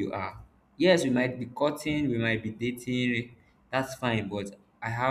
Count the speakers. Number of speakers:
one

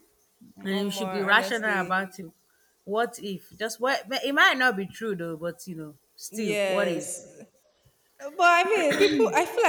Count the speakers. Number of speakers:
two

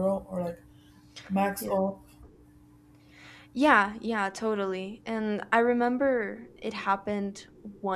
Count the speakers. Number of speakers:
two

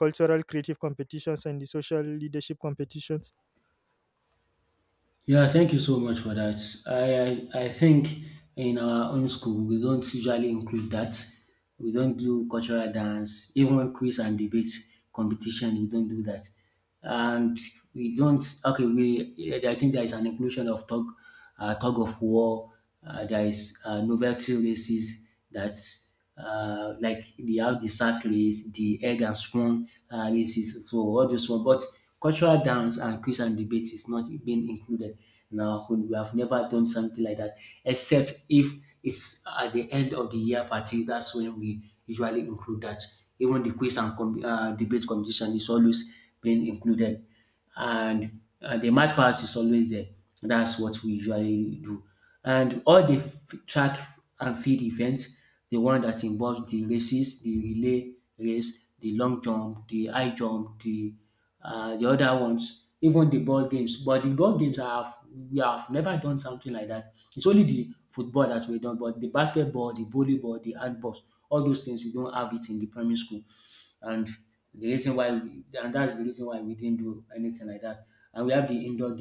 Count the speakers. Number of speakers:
two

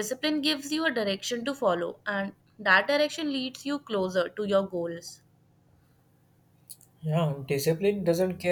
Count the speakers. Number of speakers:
two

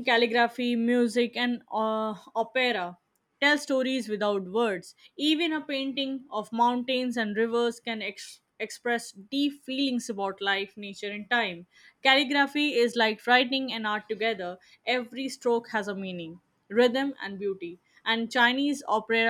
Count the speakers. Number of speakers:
one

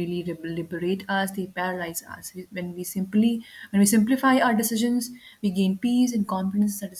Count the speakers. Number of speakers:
one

